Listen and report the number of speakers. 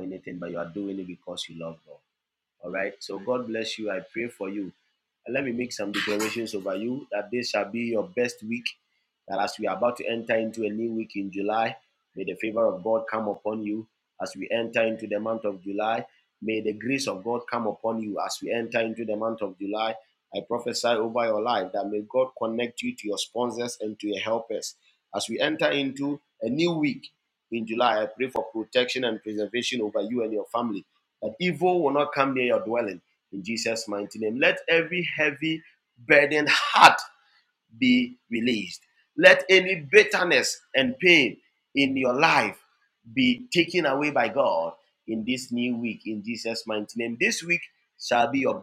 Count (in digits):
1